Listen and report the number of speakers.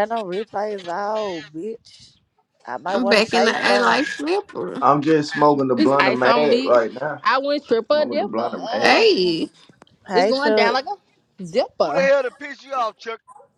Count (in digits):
5